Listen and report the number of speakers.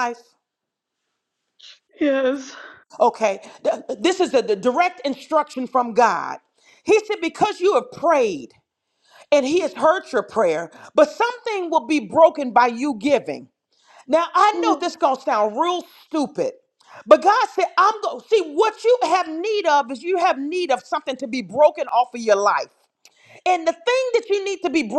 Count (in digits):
2